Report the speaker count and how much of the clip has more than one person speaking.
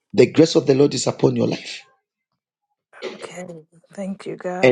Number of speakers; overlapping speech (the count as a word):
two, about 3%